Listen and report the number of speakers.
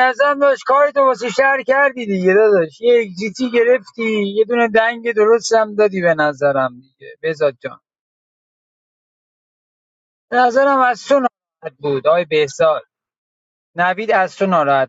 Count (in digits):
1